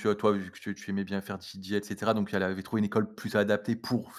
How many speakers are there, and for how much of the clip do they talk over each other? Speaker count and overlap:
one, no overlap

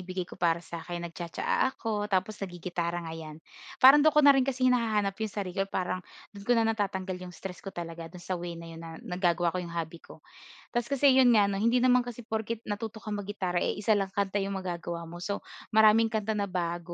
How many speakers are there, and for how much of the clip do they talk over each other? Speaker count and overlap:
one, no overlap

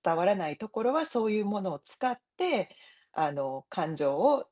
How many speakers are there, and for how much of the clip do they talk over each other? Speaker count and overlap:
one, no overlap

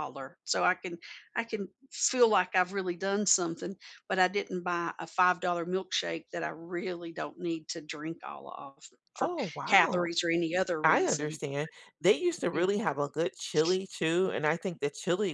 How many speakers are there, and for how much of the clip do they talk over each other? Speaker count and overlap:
two, about 8%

